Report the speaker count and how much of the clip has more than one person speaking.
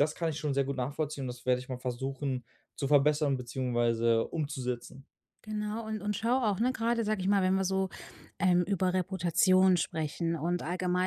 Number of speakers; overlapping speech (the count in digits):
2, no overlap